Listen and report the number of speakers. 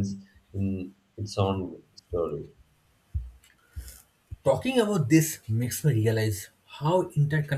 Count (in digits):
2